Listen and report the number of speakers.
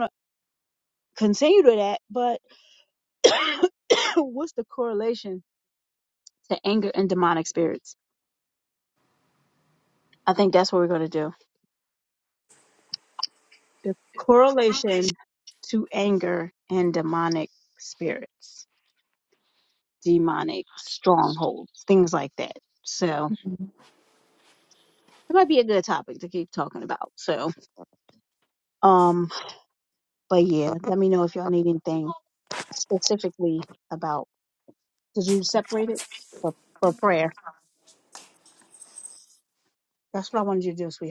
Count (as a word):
one